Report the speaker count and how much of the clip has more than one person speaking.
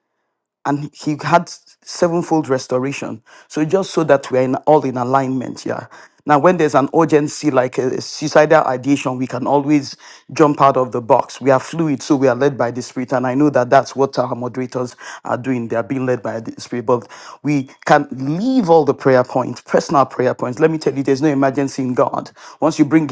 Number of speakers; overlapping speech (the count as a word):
one, no overlap